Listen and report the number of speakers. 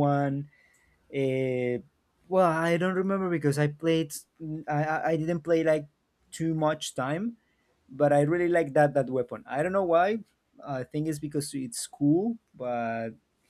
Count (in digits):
1